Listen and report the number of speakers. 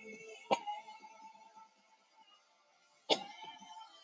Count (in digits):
0